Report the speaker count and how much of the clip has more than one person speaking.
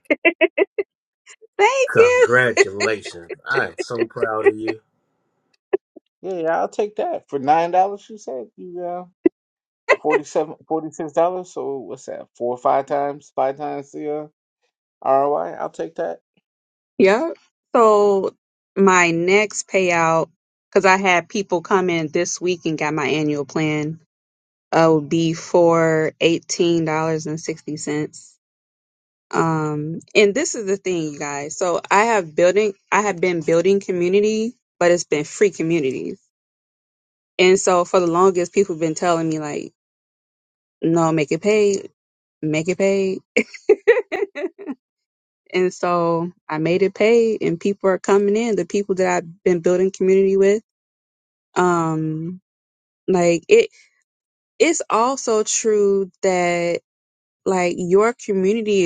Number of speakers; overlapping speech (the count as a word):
three, about 1%